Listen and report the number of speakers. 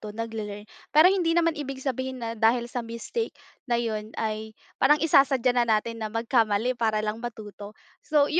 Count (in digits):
1